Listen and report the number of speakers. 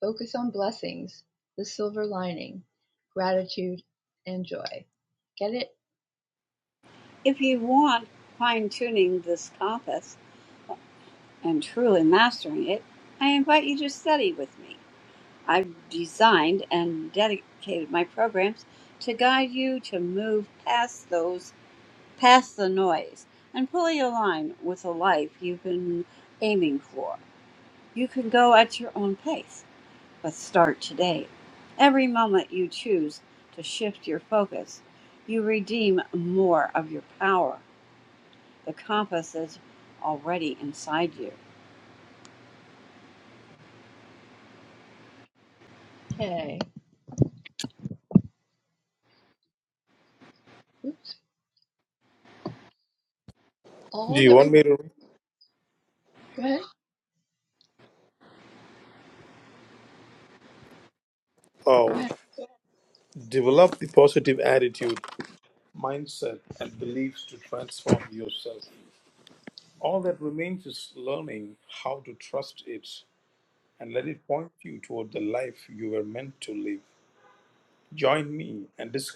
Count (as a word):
three